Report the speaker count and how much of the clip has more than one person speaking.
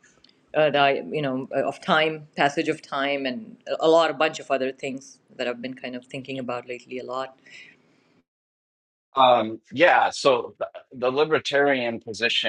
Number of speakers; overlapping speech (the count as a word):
two, no overlap